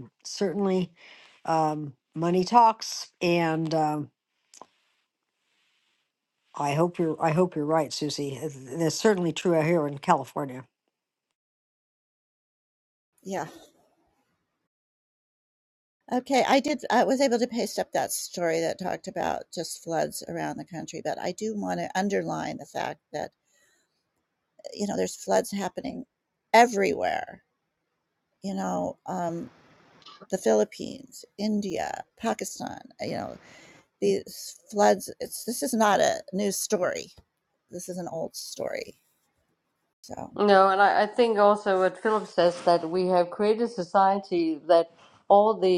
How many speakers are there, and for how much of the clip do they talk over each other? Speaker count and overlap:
three, no overlap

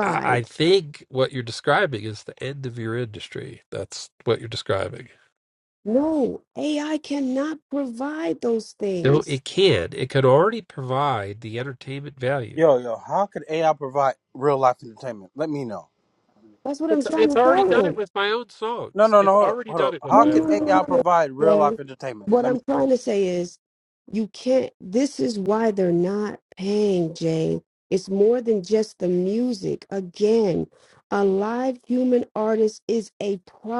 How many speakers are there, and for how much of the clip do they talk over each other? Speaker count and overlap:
three, about 13%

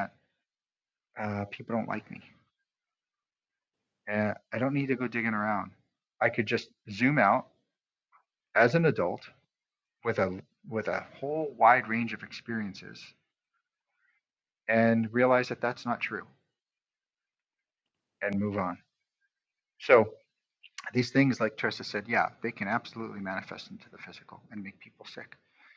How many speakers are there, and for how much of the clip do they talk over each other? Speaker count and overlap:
one, no overlap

